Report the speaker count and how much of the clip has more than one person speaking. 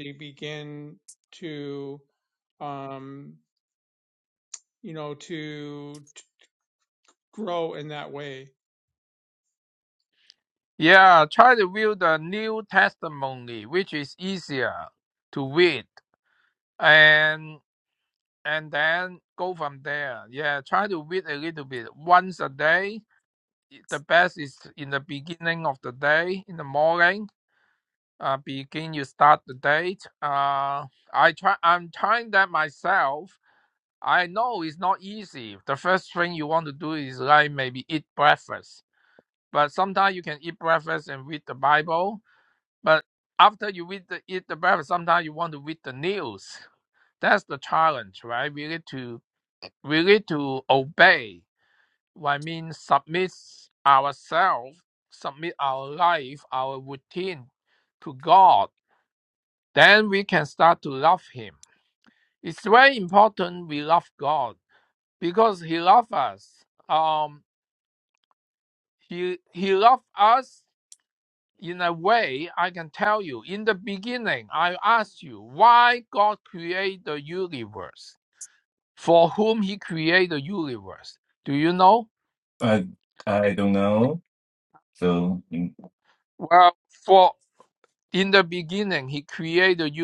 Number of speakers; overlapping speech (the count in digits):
3, no overlap